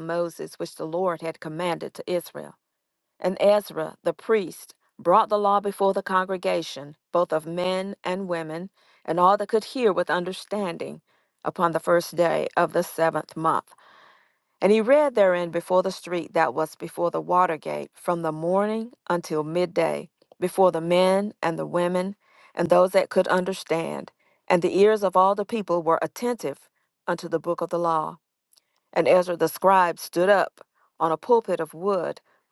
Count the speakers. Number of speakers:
one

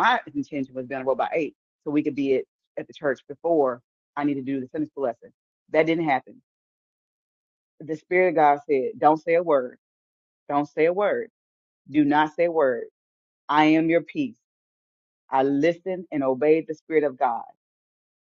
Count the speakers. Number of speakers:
one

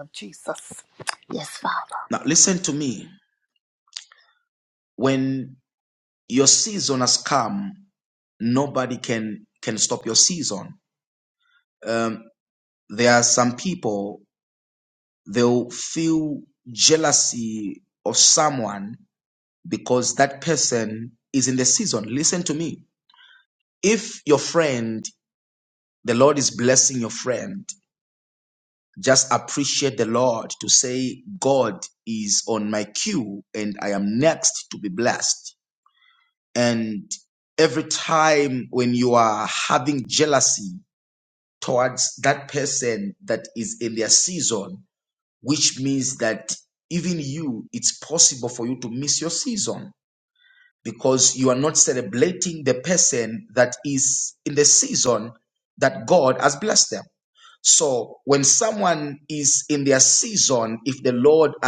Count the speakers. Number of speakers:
two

